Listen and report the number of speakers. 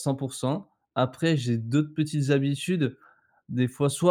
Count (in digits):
1